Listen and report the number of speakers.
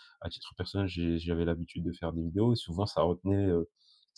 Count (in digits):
1